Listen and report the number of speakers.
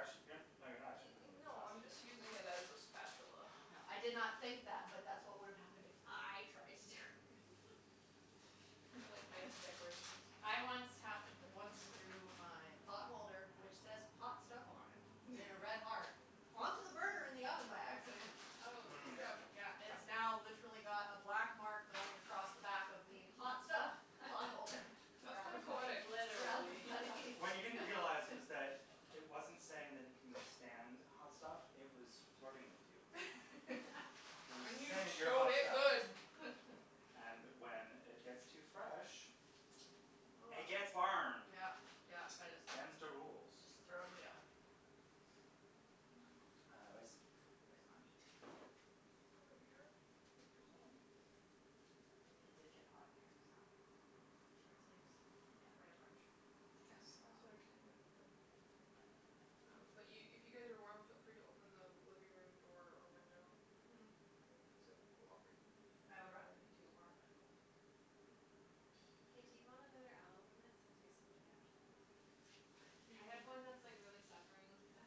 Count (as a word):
four